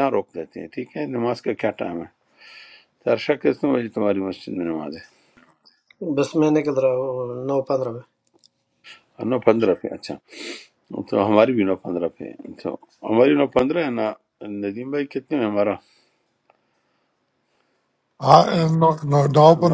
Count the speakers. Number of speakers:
3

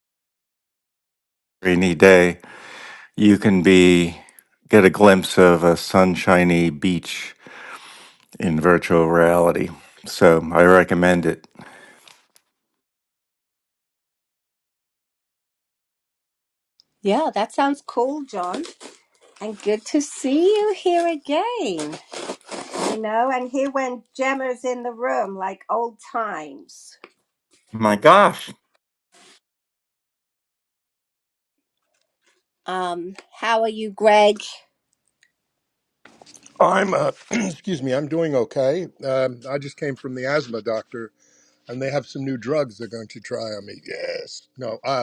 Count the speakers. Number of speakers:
3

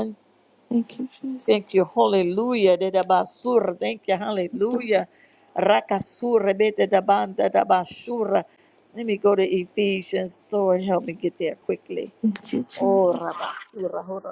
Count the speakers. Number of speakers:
2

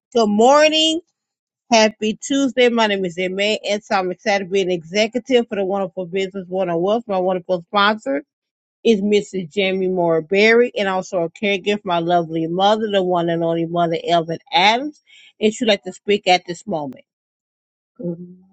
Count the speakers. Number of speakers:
1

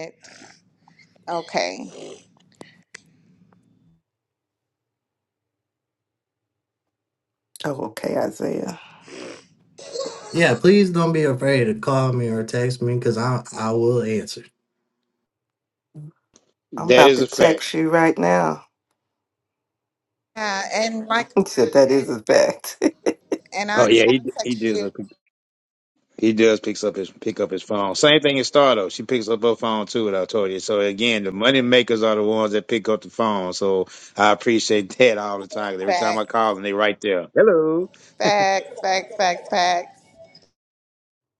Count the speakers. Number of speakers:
4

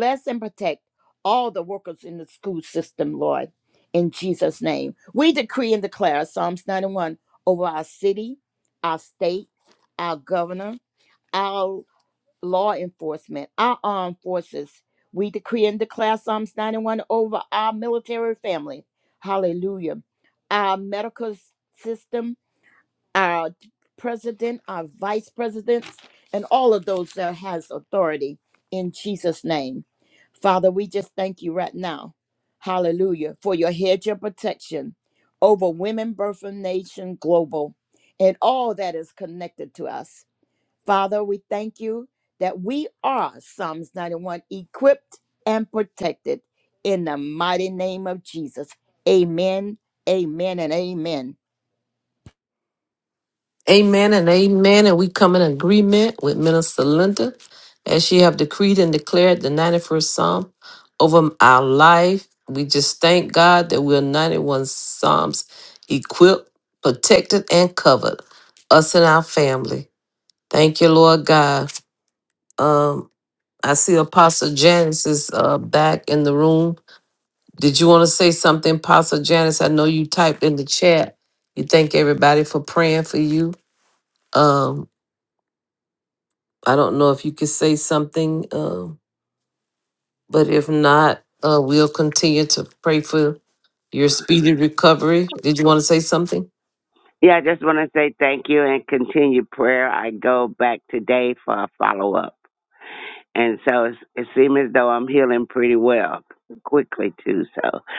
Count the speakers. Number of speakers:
3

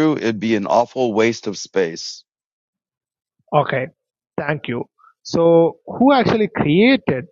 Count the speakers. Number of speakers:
2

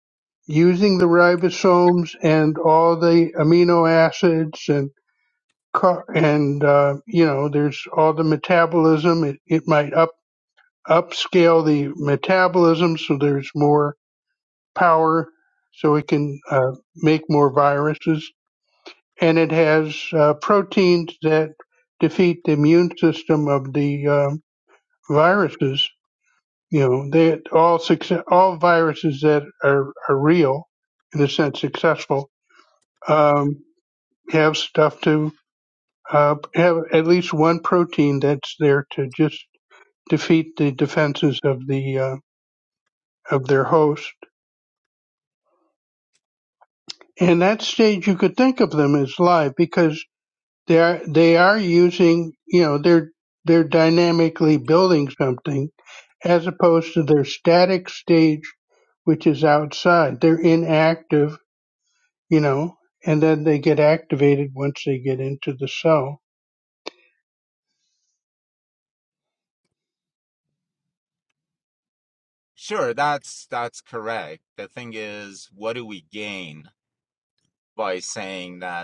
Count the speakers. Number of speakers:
2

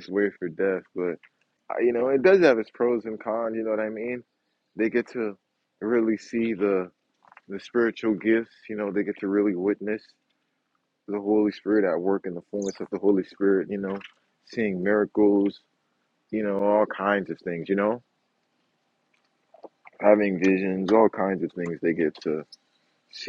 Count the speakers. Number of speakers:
1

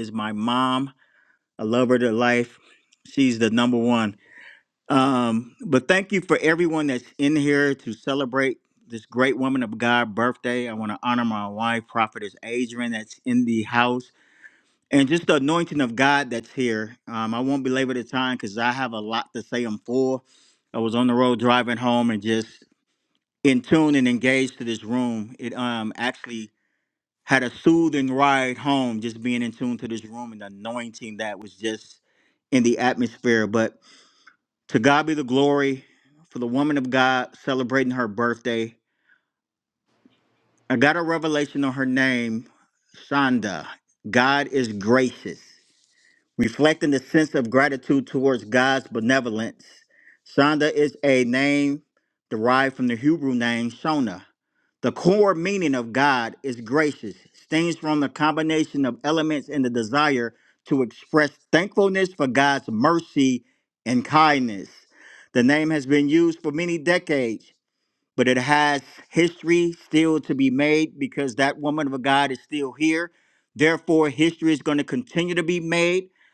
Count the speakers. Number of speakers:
1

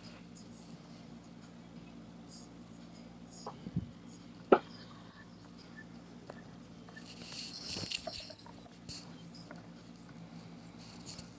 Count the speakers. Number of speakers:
0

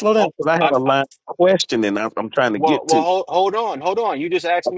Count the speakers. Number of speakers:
2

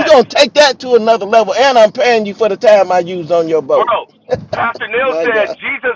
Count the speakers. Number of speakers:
2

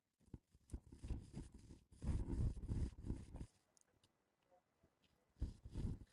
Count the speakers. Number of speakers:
0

